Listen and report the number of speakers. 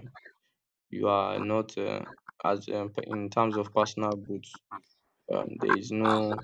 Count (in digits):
1